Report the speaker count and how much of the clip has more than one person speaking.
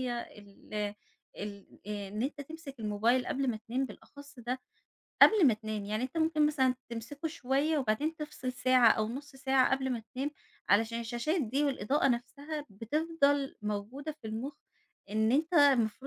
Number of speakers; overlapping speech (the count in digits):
1, no overlap